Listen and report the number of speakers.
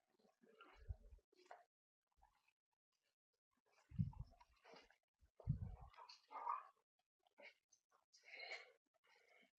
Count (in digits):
0